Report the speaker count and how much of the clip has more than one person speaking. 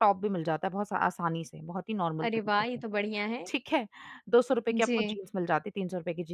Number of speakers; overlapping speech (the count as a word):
two, about 17%